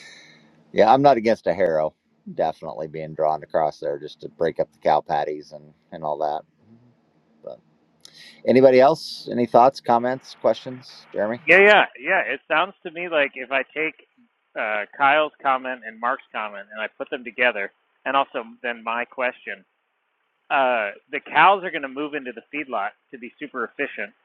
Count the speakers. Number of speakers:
2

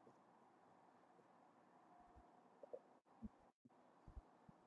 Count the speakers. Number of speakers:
0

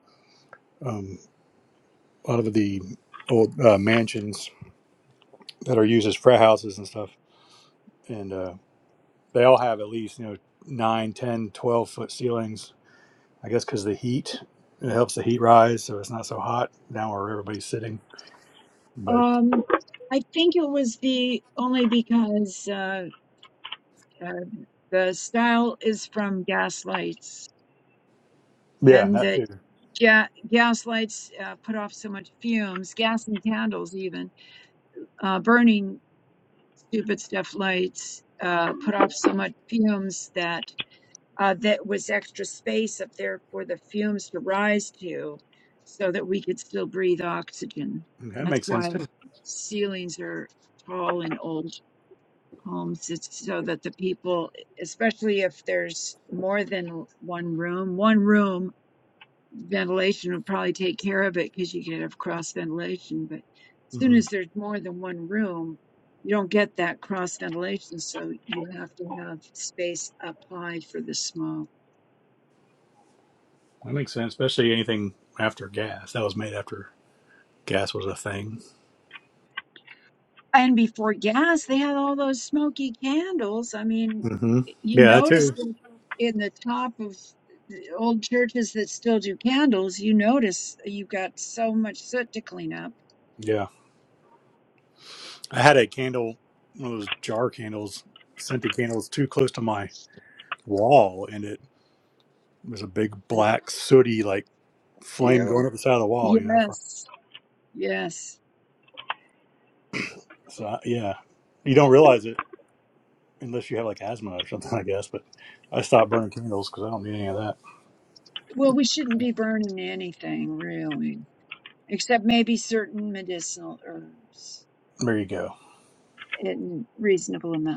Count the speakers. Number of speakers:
2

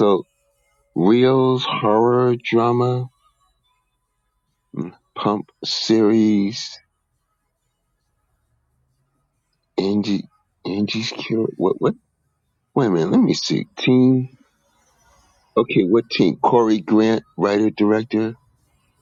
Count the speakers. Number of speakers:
1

